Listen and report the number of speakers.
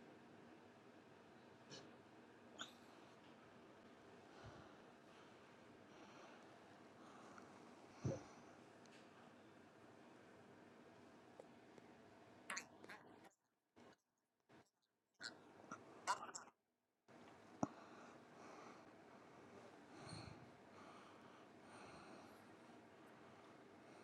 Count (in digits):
0